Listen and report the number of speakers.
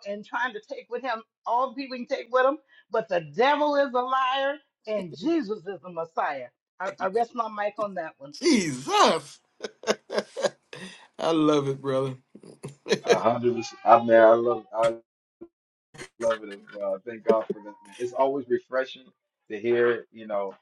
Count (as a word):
three